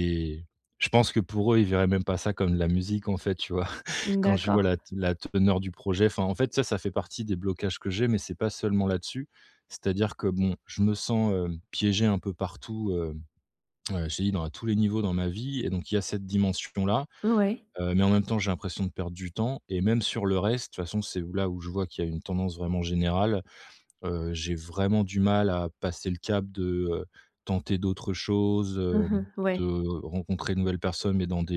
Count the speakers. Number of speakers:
two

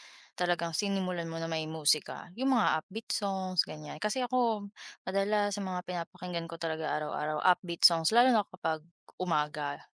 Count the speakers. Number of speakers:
one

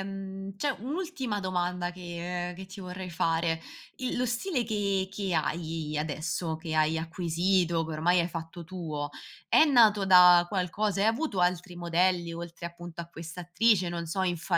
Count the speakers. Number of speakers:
one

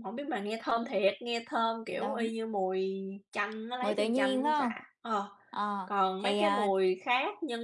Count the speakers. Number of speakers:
two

